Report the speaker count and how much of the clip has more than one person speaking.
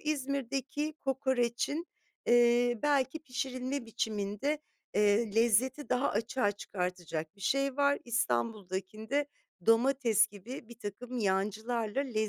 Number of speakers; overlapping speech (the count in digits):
1, no overlap